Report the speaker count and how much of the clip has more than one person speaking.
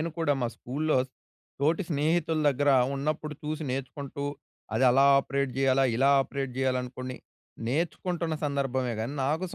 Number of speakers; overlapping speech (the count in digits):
1, no overlap